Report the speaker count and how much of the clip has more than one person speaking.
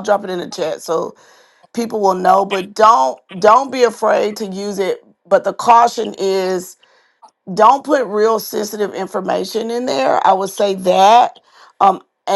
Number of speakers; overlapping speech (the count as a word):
one, no overlap